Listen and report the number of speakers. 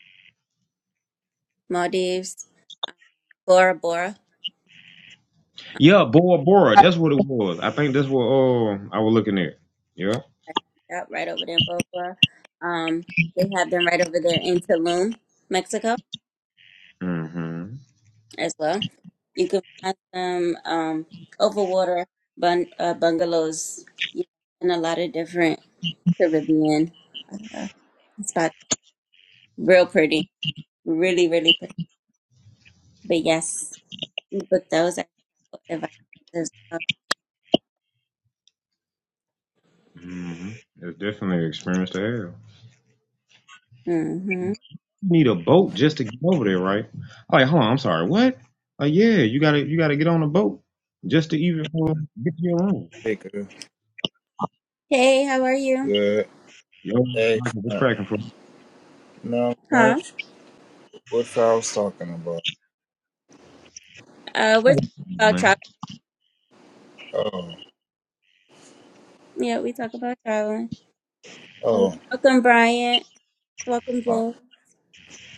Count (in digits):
3